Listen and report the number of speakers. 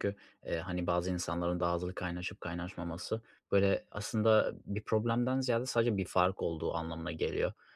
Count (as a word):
one